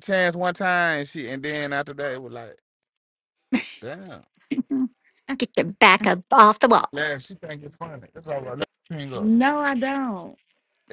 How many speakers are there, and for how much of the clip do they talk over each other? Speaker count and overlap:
3, about 1%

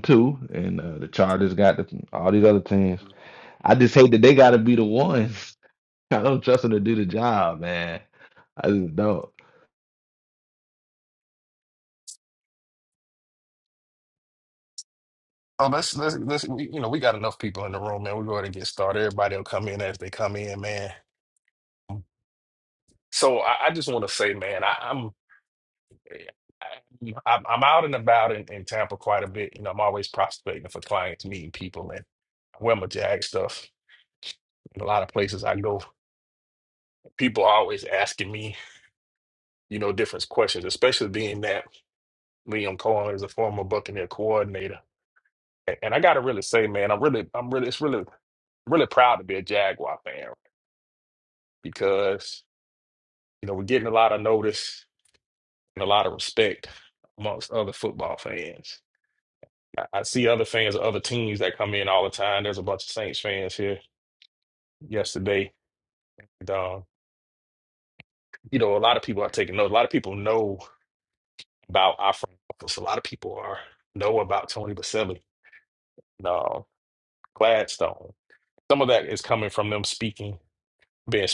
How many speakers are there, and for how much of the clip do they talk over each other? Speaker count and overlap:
2, no overlap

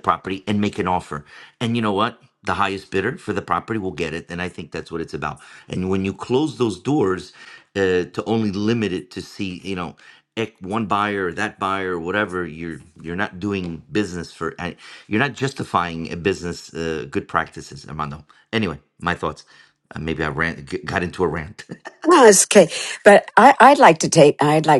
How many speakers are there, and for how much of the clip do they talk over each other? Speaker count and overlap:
2, no overlap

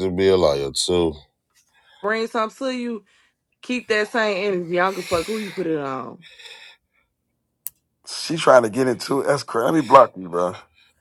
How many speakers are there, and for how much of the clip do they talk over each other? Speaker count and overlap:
3, no overlap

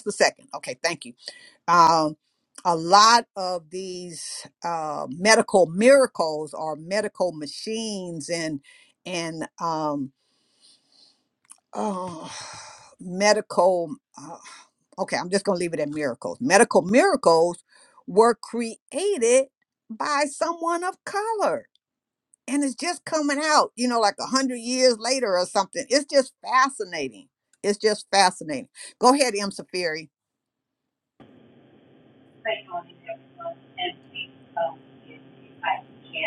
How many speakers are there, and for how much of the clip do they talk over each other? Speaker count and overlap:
2, no overlap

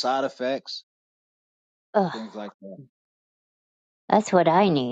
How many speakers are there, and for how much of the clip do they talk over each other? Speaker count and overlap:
2, under 1%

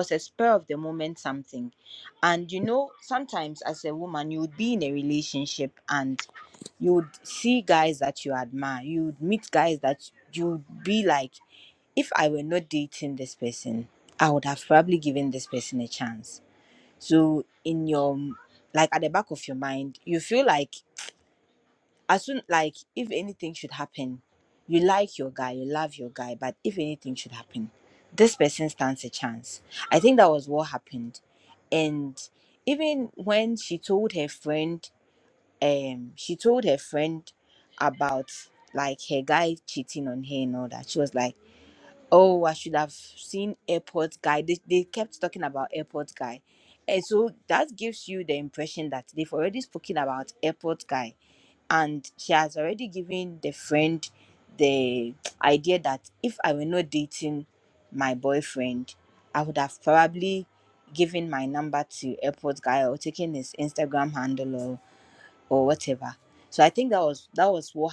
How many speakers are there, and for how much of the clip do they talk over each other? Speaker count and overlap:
1, no overlap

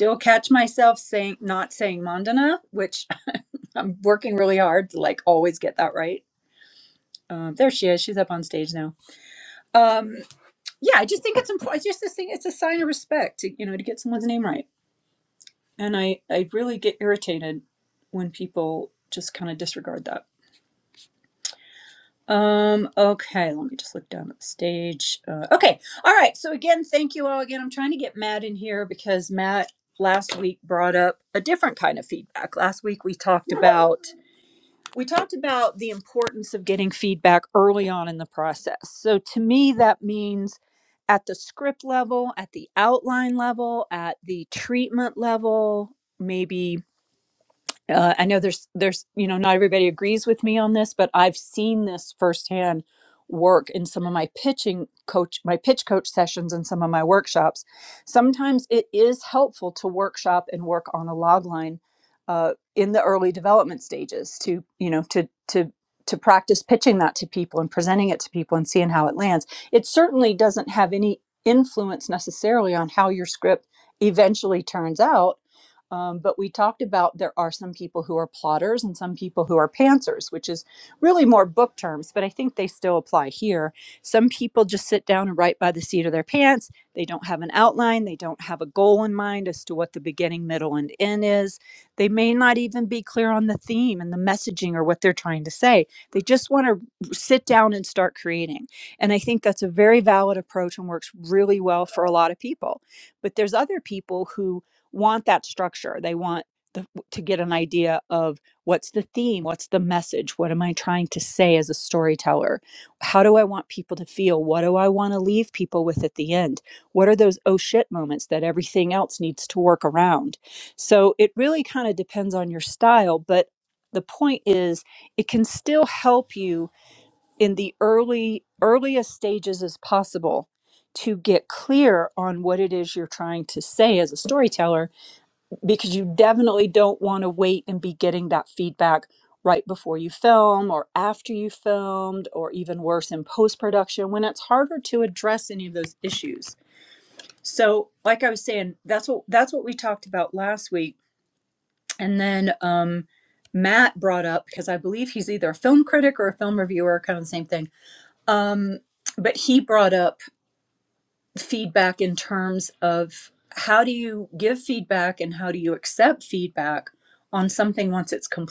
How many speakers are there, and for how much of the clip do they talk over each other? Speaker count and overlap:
1, no overlap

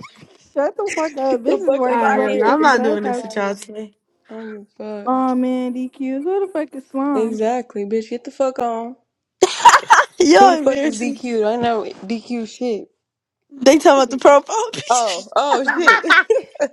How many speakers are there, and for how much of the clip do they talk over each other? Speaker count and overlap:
3, about 23%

